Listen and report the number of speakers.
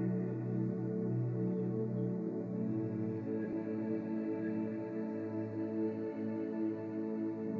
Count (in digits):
0